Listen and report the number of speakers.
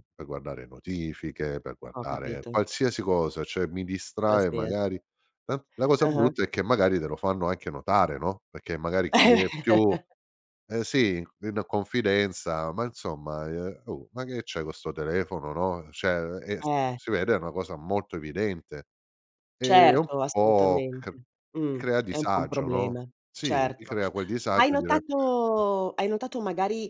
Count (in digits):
2